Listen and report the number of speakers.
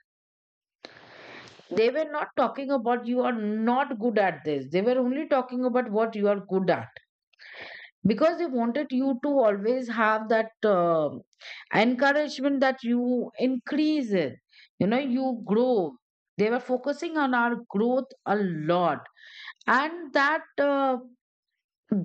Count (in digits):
1